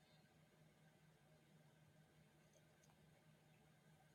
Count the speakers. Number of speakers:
0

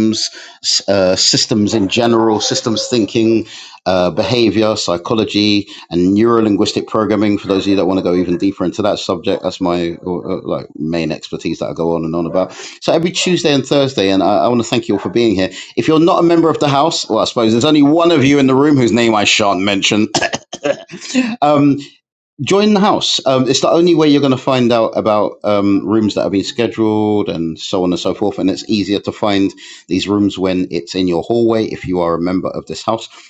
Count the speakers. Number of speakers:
1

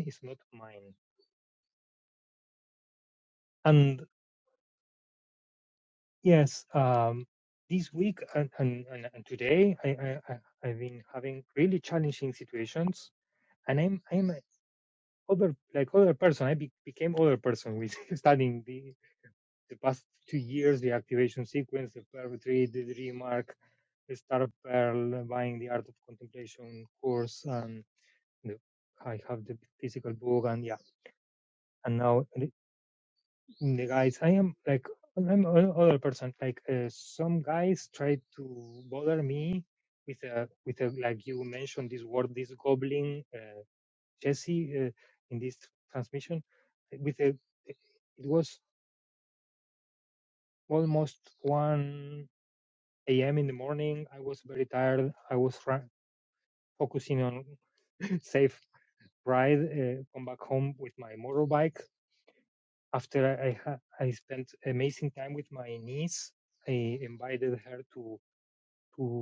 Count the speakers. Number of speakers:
1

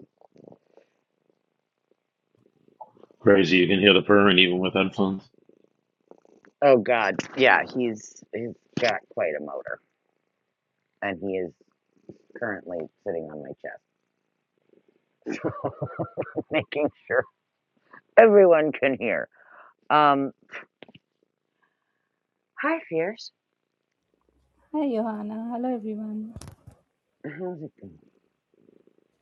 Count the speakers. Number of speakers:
3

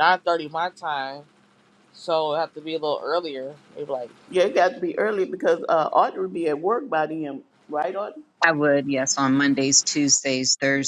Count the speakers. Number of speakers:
3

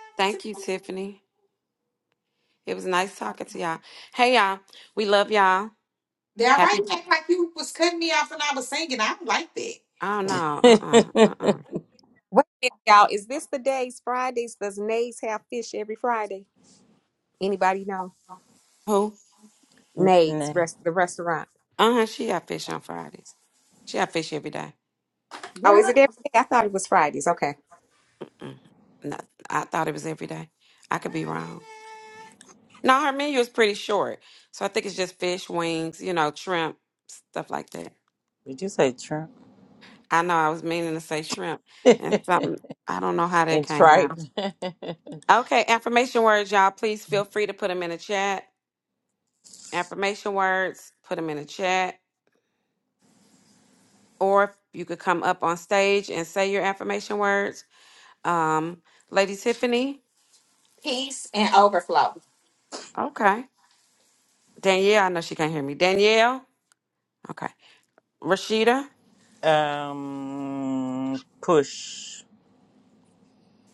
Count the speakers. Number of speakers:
4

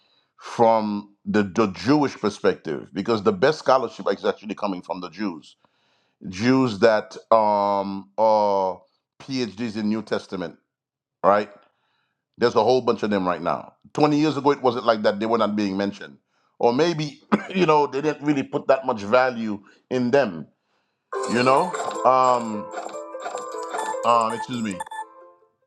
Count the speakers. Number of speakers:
1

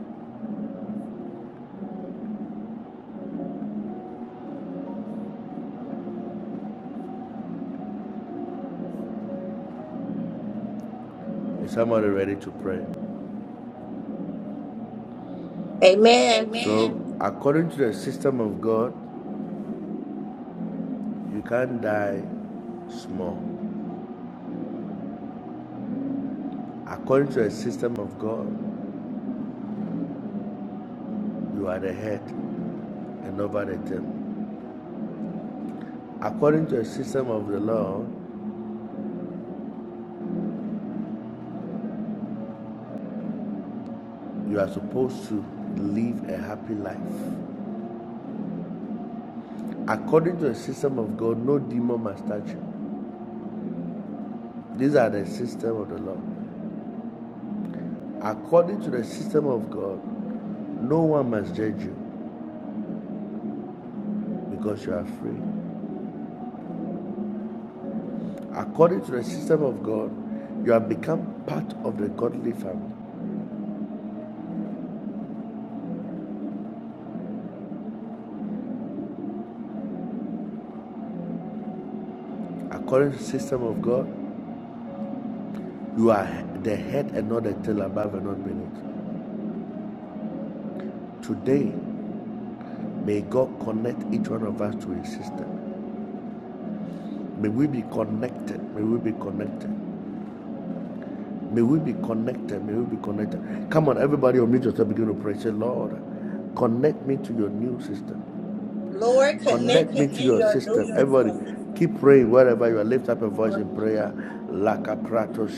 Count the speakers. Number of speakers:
2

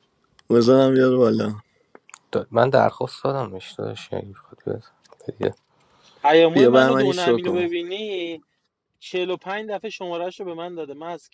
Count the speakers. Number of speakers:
3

